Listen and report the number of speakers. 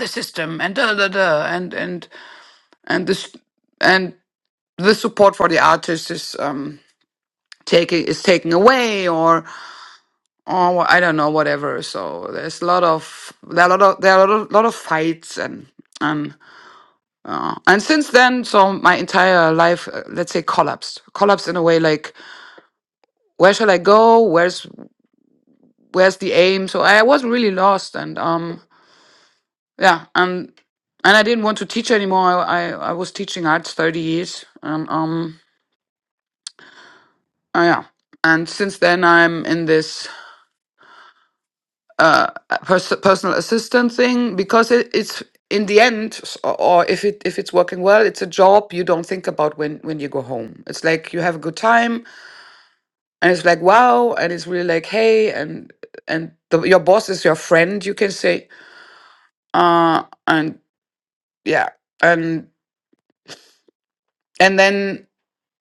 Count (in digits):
1